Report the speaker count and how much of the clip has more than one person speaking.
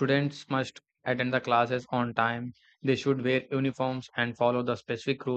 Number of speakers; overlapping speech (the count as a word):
one, no overlap